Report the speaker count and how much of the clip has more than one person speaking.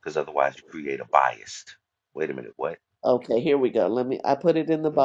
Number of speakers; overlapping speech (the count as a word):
two, about 3%